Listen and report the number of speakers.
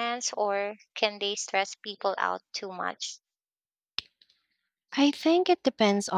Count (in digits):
2